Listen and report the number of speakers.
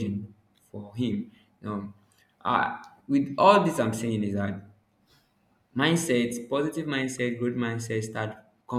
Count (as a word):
one